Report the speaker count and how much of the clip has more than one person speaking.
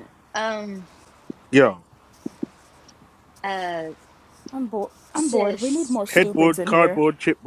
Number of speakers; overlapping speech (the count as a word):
three, about 18%